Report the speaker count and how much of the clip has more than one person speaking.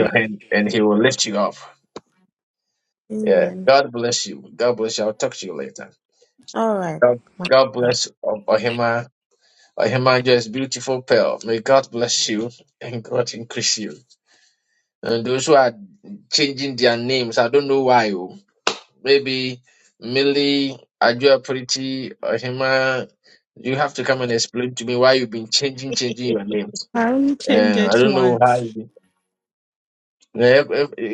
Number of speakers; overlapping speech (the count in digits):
3, about 5%